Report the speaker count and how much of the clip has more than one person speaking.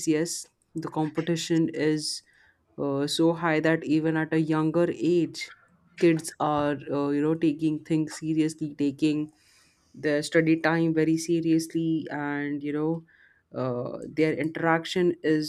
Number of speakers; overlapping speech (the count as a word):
one, no overlap